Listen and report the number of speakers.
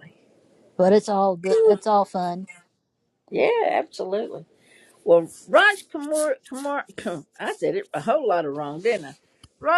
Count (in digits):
2